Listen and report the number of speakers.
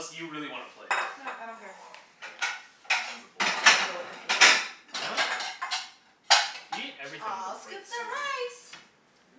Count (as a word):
four